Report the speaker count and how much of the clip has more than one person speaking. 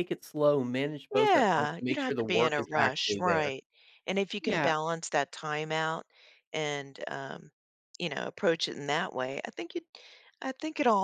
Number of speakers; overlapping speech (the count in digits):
2, about 25%